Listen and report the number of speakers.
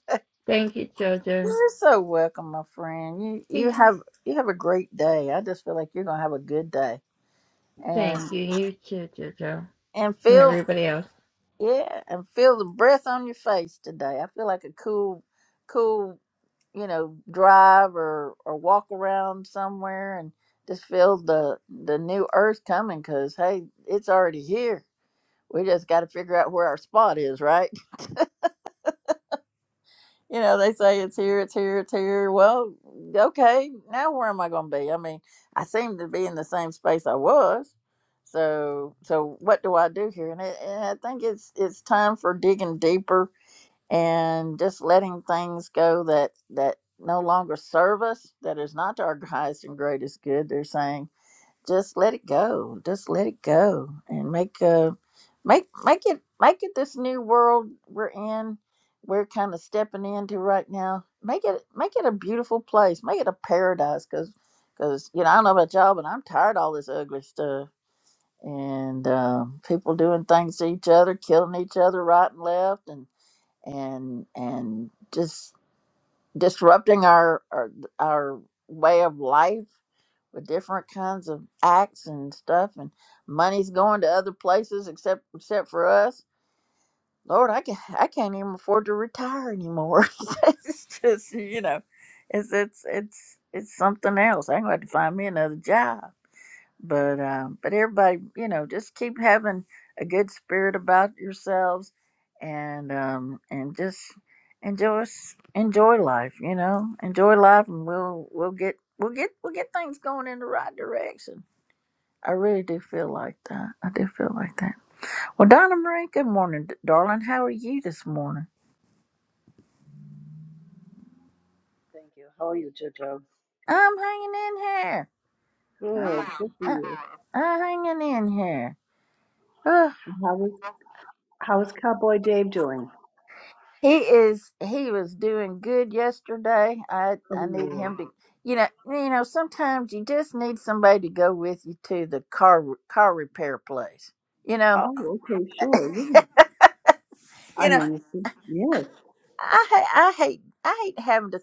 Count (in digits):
3